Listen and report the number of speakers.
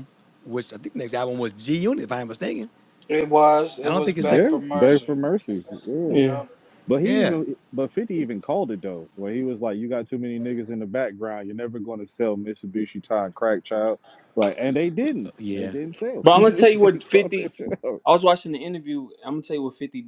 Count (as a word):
four